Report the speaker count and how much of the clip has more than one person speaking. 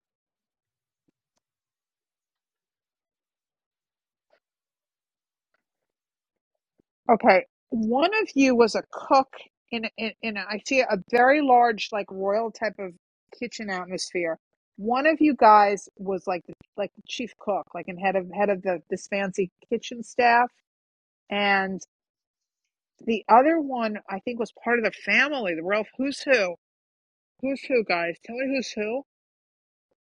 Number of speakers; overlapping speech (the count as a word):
one, no overlap